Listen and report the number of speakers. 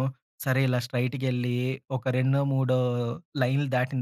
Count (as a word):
one